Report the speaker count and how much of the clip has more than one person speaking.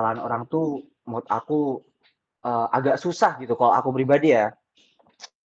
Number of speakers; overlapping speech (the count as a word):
one, no overlap